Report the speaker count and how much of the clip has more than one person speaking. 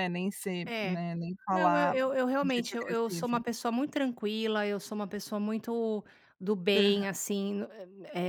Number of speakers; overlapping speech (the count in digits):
2, about 25%